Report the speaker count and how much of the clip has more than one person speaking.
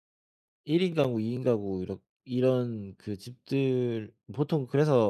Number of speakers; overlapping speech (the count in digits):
1, no overlap